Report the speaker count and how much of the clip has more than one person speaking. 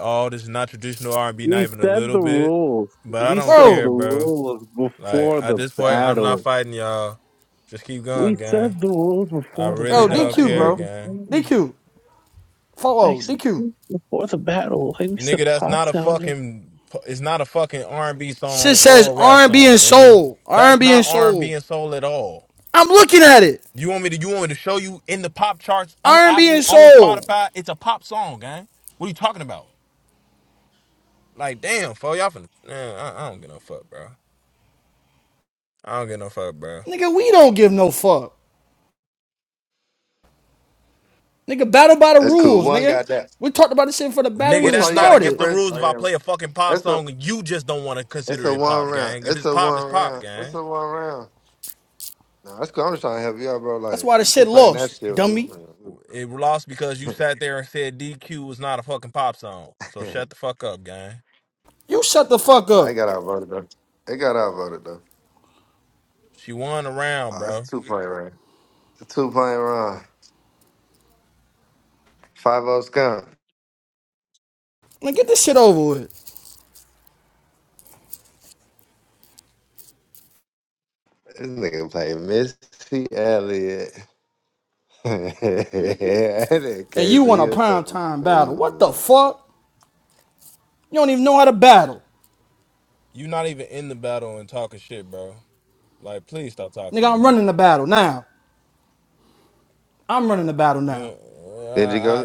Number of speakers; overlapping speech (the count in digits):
4, about 19%